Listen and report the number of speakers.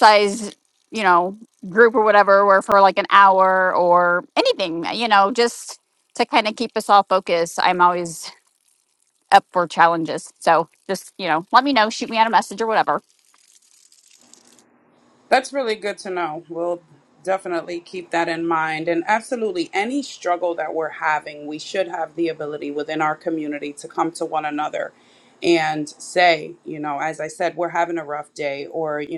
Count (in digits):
2